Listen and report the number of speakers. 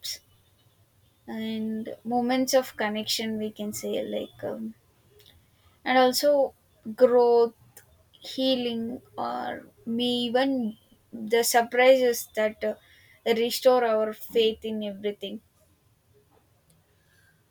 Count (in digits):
1